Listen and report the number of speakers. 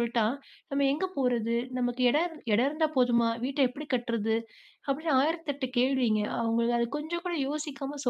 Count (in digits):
1